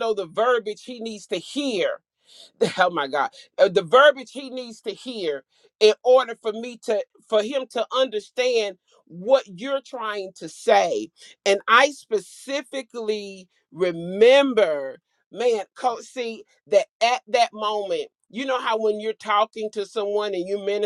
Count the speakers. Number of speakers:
one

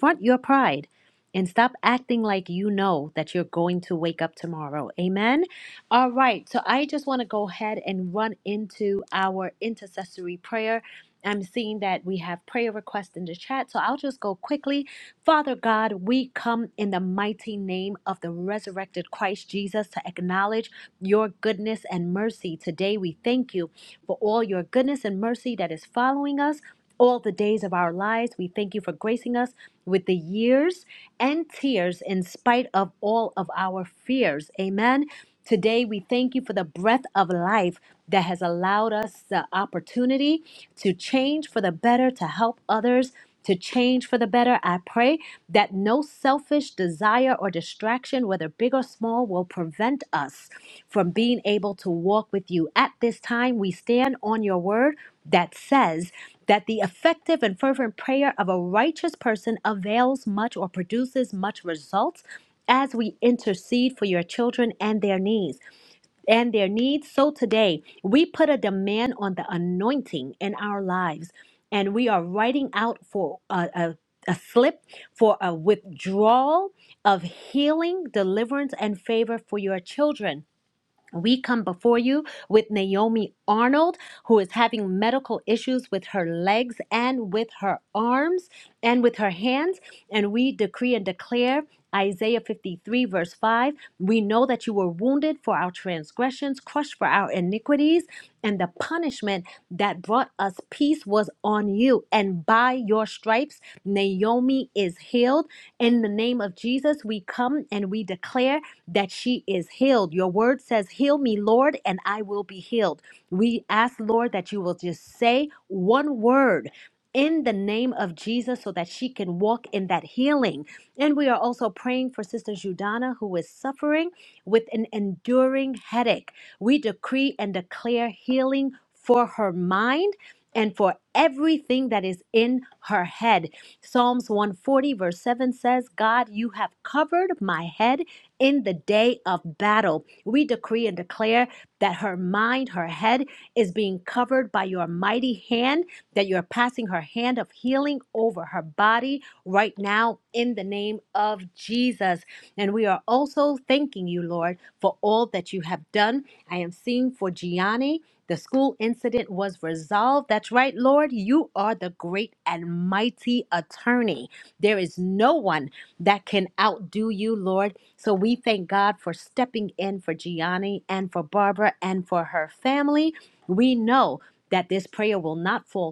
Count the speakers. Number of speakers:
one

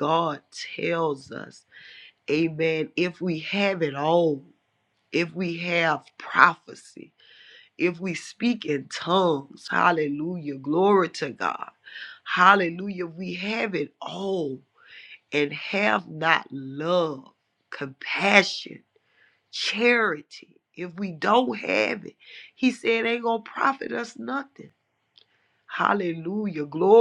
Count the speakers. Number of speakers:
one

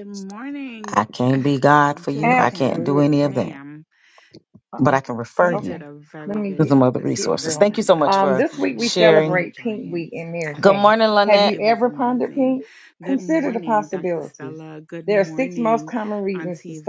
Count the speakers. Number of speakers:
three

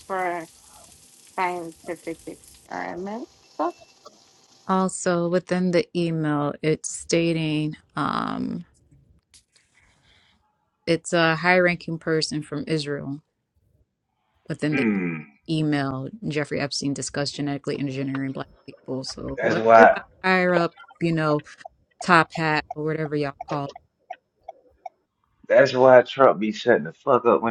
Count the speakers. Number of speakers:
three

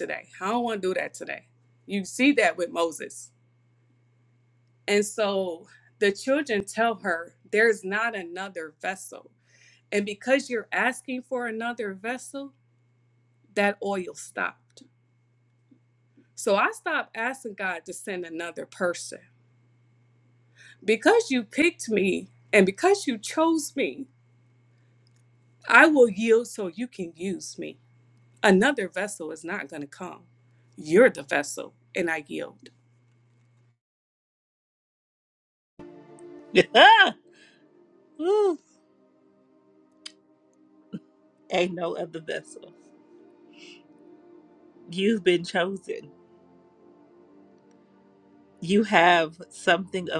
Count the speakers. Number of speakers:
two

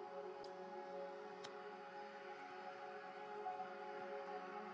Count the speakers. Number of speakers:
zero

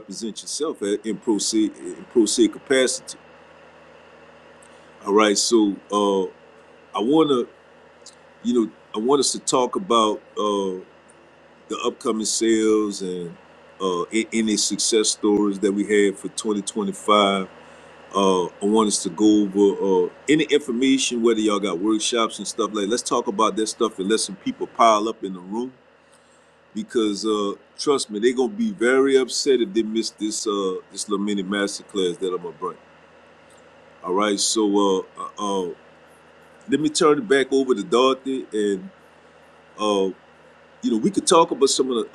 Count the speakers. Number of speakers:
one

